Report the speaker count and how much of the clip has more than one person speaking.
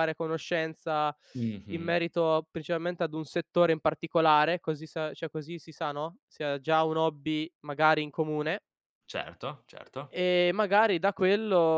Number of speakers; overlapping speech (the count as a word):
two, about 2%